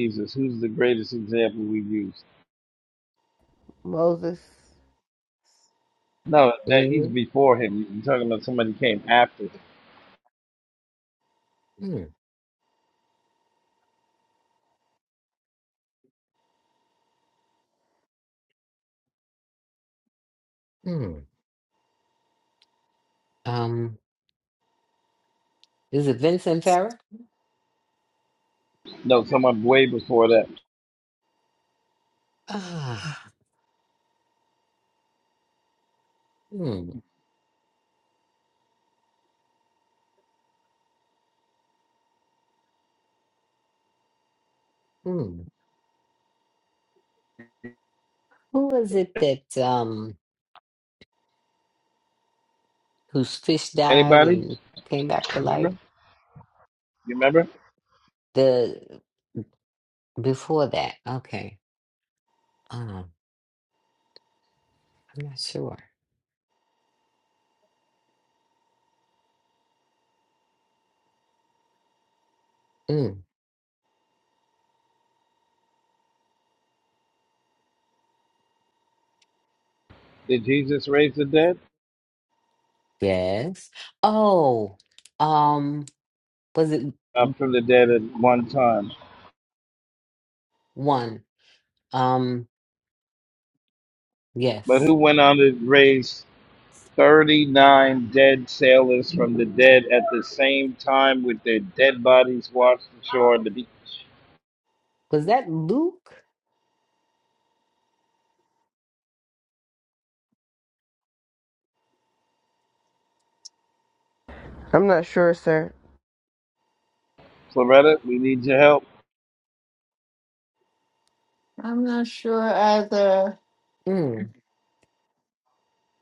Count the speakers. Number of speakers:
four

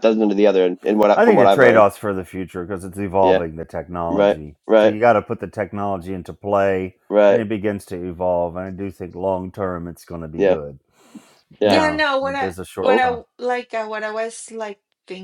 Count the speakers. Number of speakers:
three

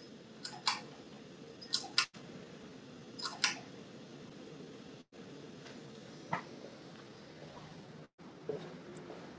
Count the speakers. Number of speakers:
zero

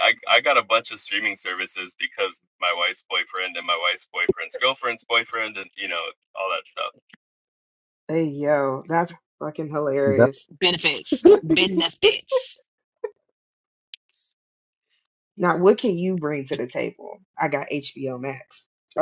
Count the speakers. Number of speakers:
three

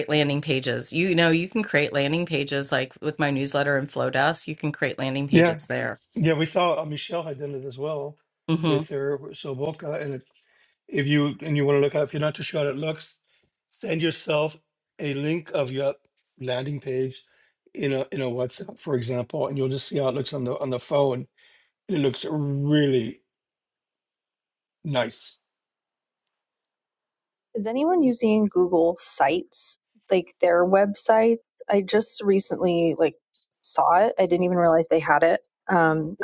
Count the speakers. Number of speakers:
three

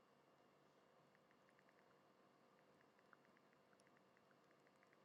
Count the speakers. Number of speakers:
zero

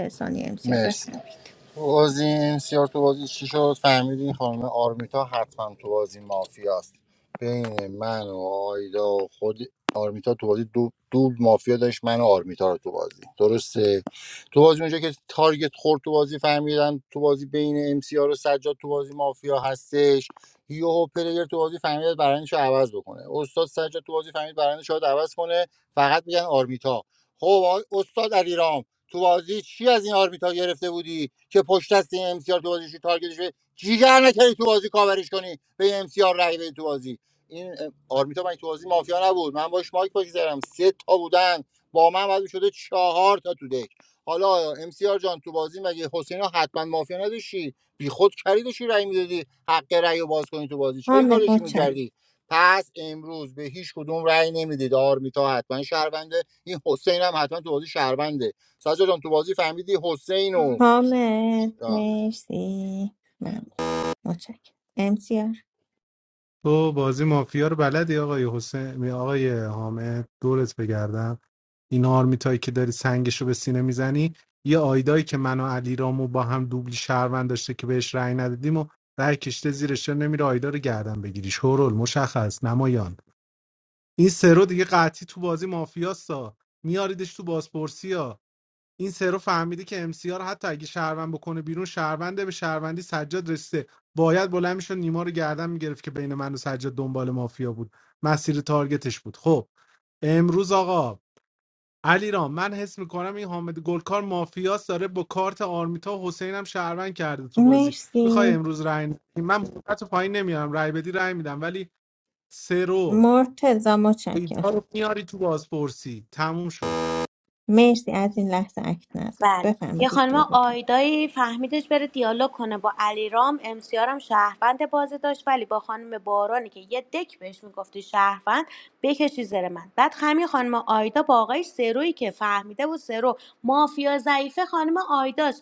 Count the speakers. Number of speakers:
four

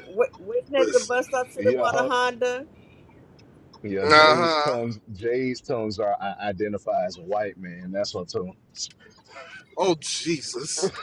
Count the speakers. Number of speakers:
three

